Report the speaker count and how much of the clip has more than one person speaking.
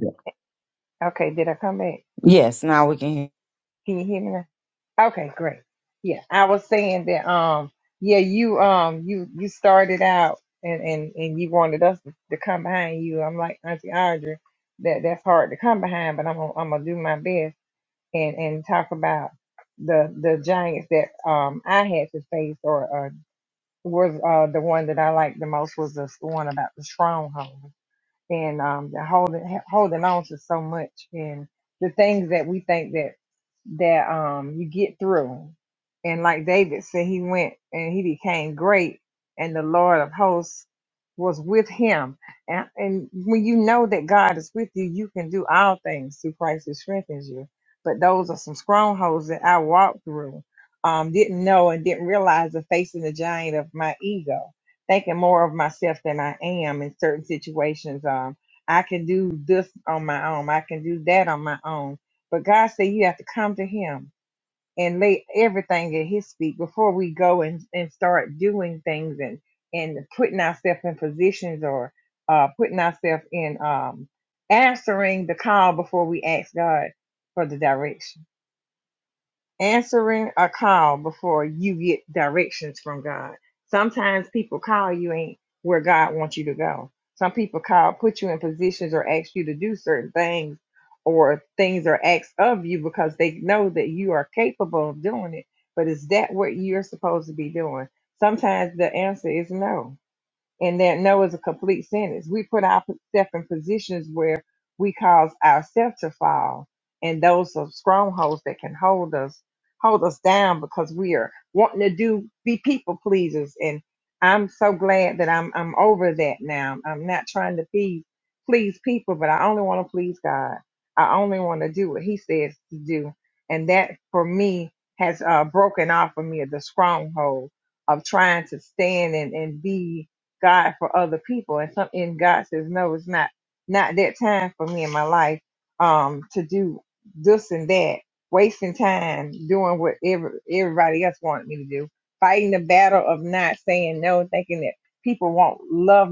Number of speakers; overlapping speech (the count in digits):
2, no overlap